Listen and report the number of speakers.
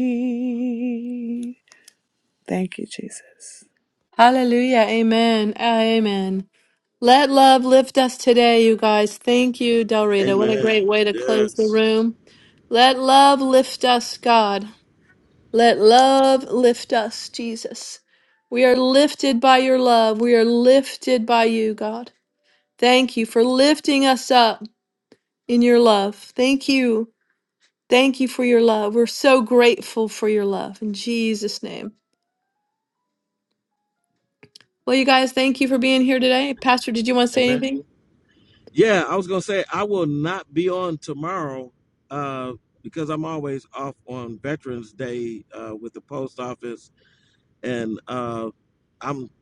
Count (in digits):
3